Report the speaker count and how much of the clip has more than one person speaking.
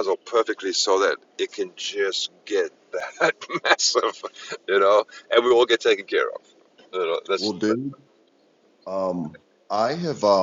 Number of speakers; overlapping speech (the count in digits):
2, about 1%